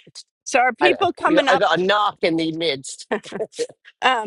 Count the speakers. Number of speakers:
2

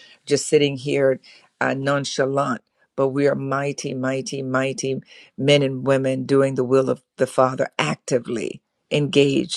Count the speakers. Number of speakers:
1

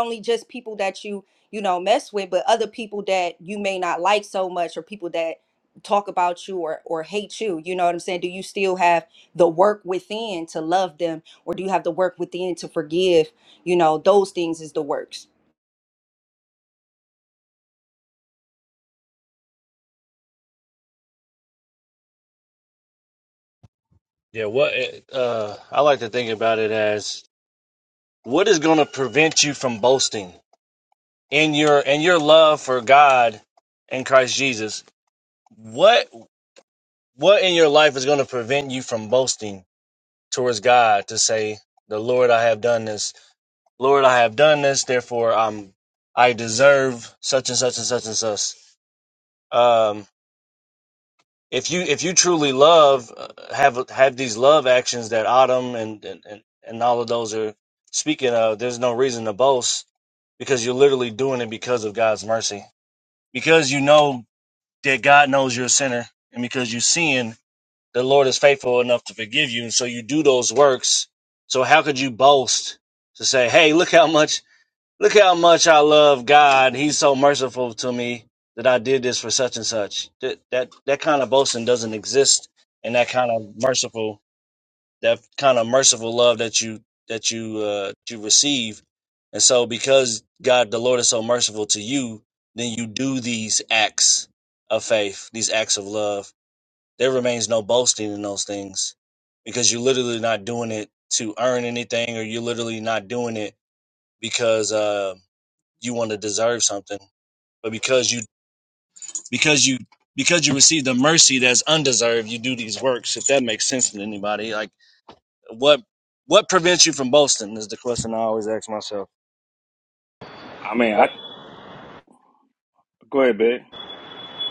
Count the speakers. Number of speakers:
3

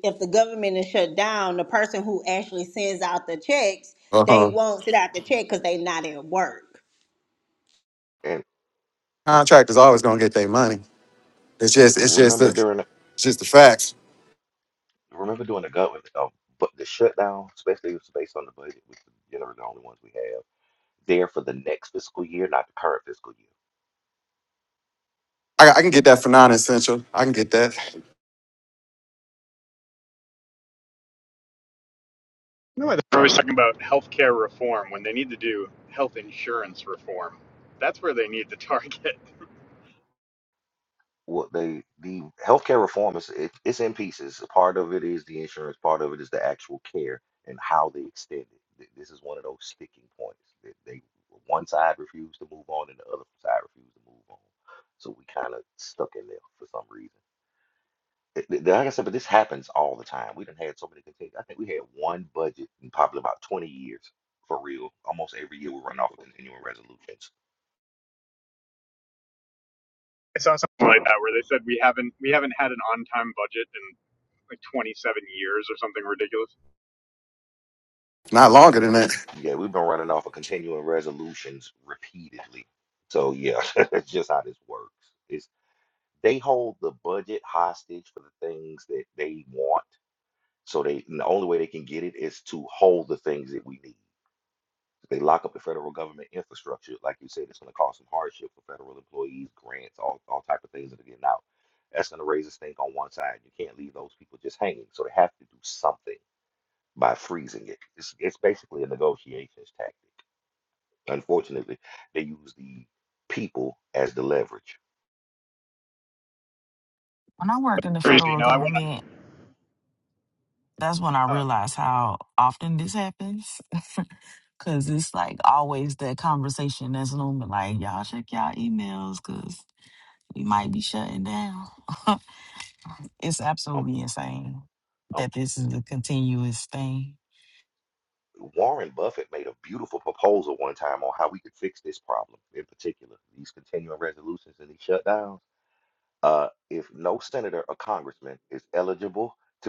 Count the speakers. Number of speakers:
5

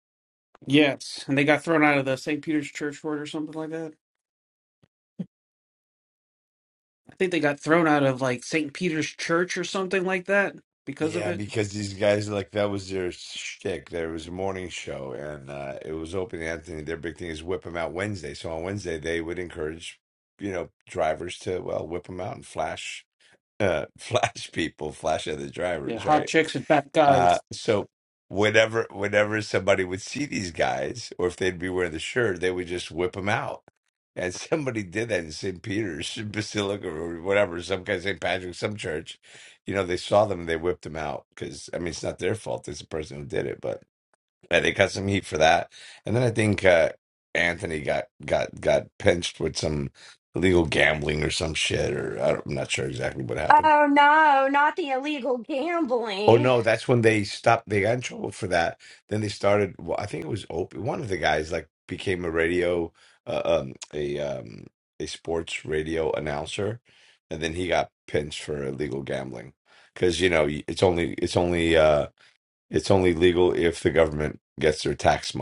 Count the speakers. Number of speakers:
3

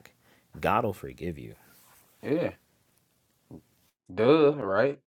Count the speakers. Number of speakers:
2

